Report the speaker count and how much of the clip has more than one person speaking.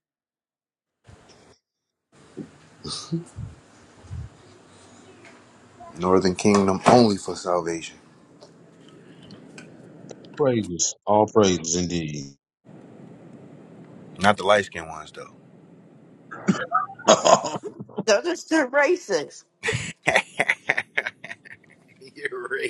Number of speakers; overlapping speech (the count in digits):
3, no overlap